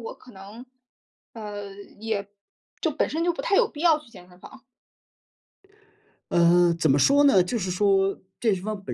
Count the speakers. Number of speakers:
2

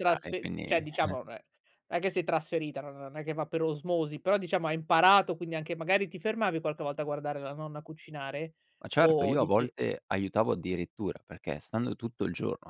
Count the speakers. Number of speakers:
2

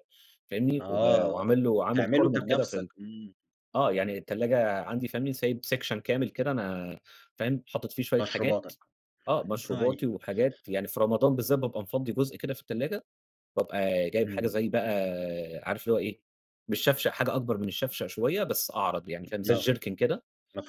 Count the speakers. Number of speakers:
2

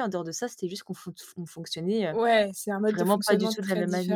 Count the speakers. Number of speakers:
2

